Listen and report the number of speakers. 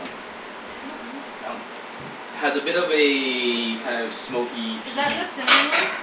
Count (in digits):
2